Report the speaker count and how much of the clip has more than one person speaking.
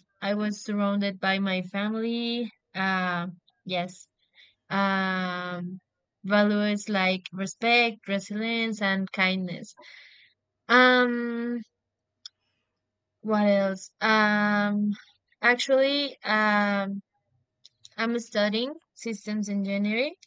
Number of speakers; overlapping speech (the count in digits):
1, no overlap